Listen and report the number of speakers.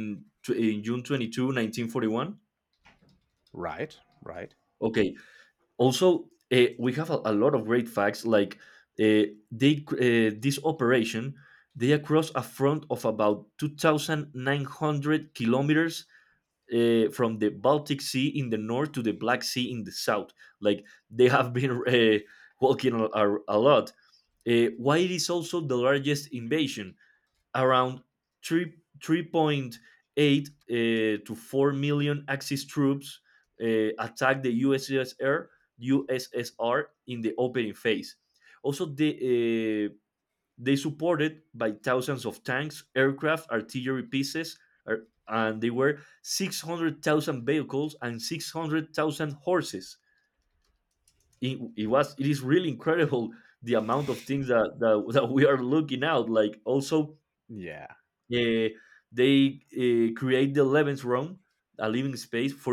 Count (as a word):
two